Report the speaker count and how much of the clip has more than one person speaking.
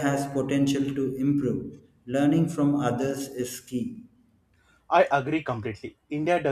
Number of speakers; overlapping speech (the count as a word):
two, no overlap